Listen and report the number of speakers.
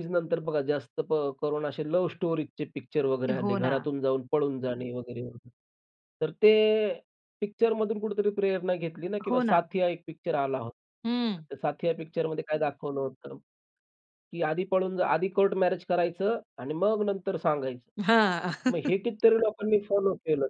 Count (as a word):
two